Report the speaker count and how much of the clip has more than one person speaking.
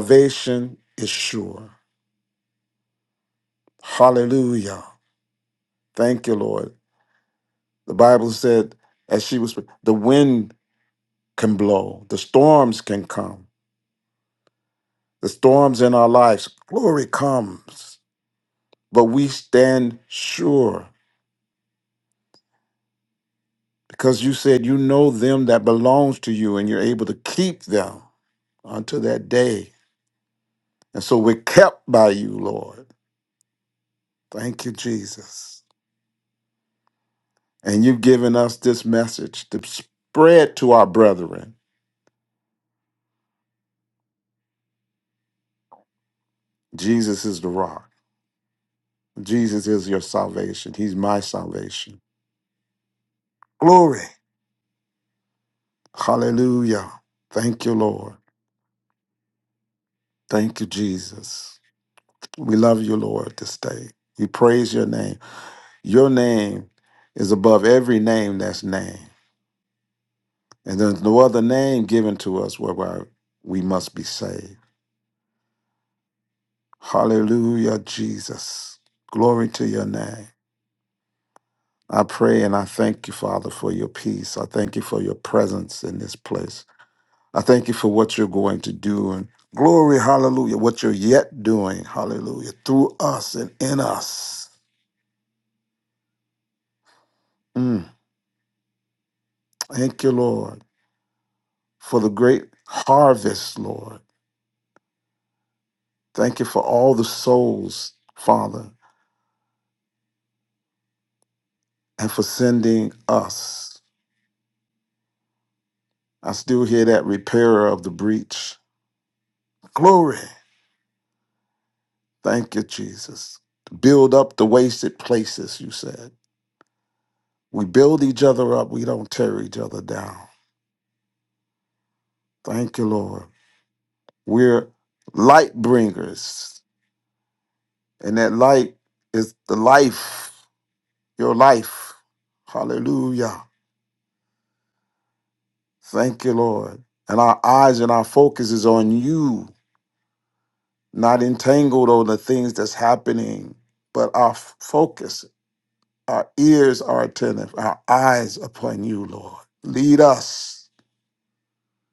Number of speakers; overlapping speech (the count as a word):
one, no overlap